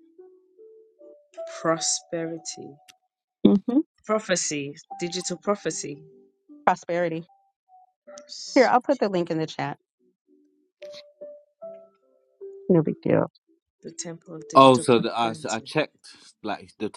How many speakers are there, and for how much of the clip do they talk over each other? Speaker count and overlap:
three, about 6%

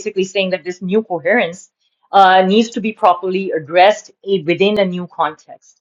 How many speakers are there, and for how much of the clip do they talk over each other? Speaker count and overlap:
one, no overlap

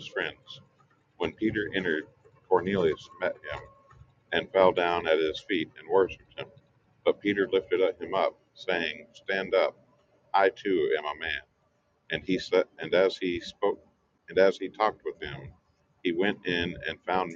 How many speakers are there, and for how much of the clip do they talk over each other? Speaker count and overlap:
one, no overlap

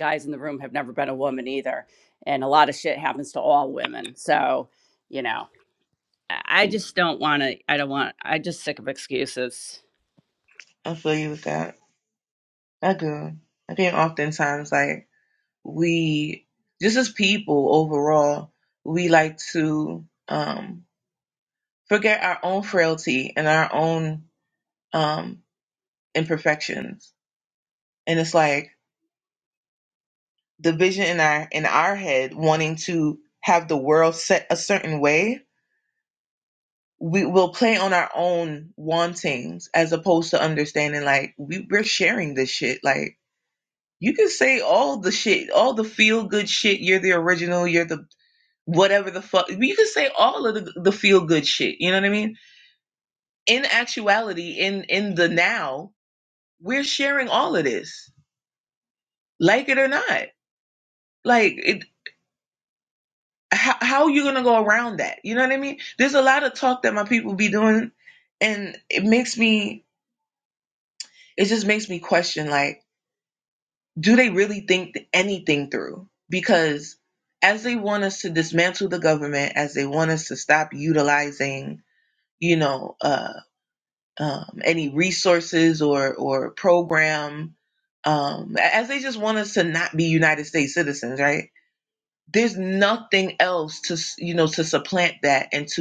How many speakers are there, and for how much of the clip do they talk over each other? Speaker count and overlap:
two, no overlap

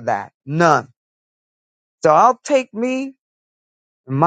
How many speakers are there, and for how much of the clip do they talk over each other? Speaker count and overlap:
one, no overlap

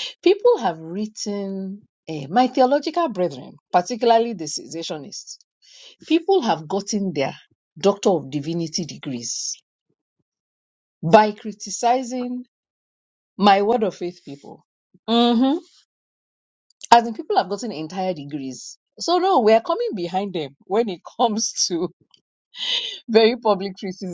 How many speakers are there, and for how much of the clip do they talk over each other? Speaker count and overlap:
one, no overlap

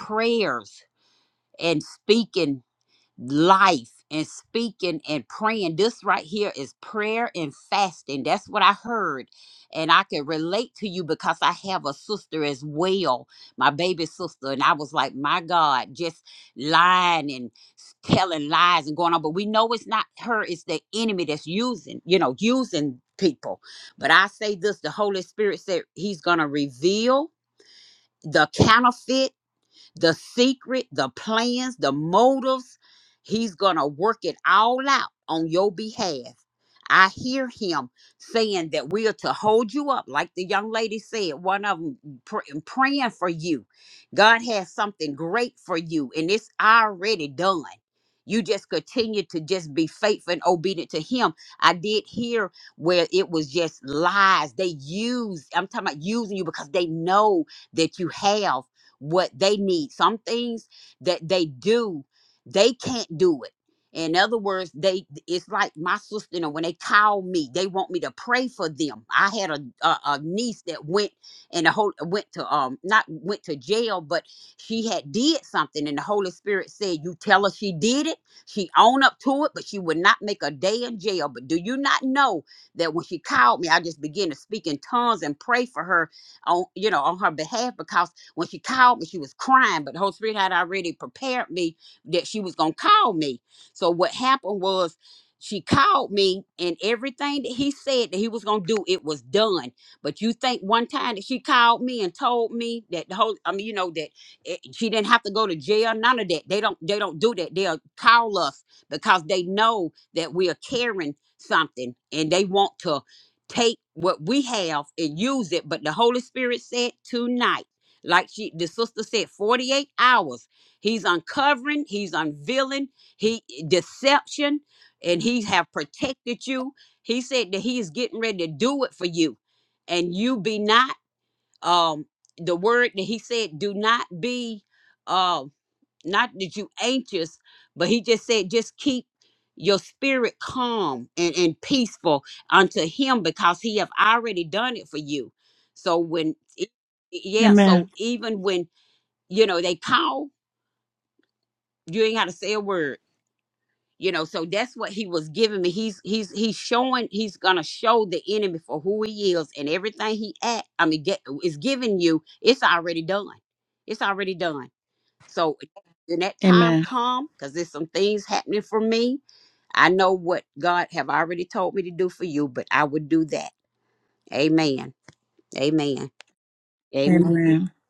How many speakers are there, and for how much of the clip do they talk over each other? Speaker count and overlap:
two, about 1%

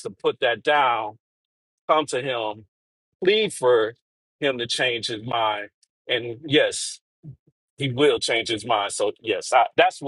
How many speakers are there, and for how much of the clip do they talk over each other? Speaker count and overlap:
one, no overlap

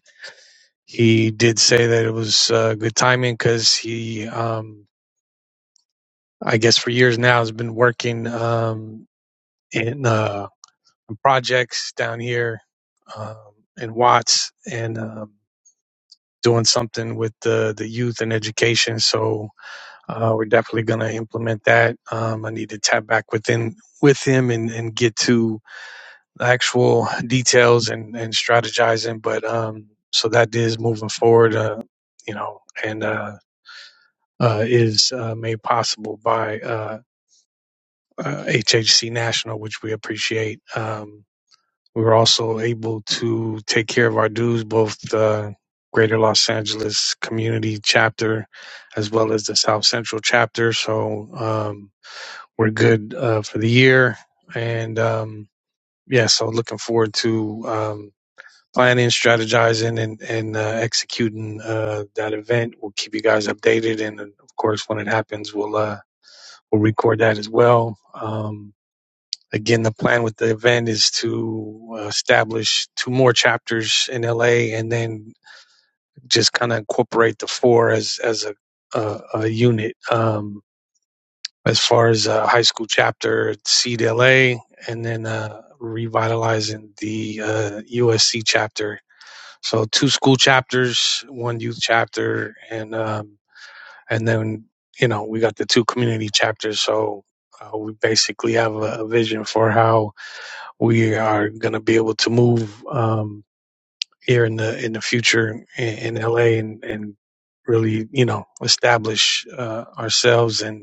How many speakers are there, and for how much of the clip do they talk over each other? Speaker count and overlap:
one, no overlap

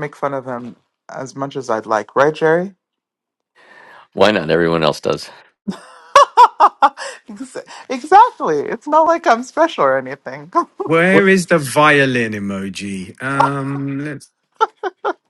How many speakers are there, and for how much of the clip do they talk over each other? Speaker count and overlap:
three, no overlap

